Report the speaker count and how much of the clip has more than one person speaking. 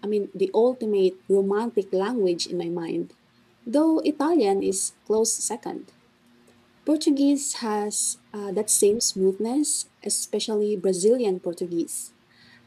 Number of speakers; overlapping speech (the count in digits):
1, no overlap